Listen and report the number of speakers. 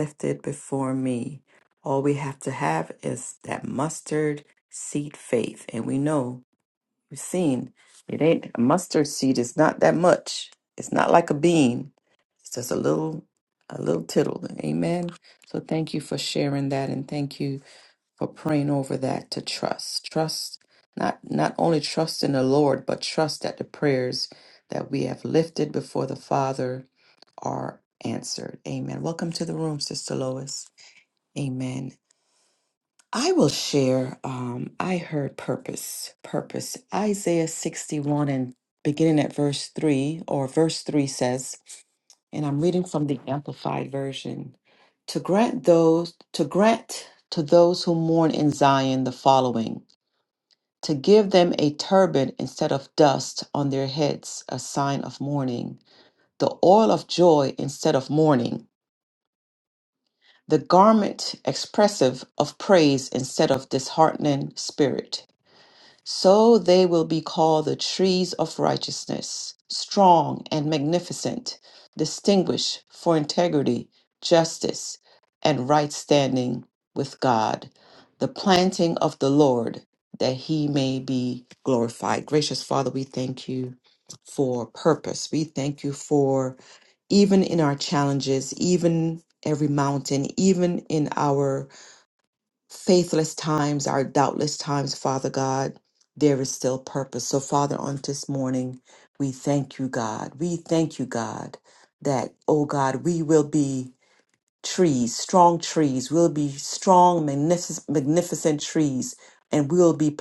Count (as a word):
one